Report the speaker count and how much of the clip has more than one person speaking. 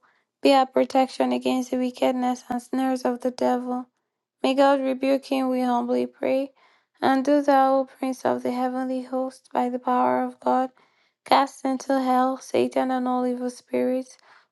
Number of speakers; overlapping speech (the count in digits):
1, no overlap